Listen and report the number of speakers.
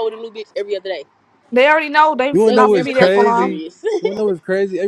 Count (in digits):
3